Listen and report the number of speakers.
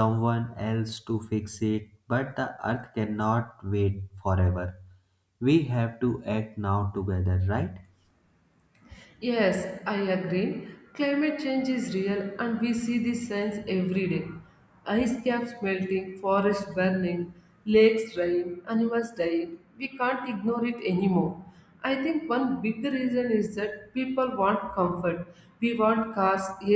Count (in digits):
2